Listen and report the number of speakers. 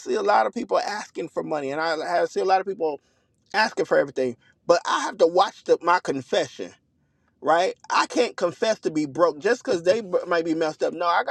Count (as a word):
one